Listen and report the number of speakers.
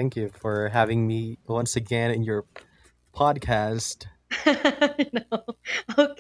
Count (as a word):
two